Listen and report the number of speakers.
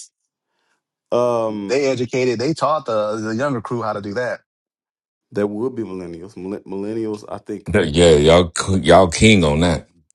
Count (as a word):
three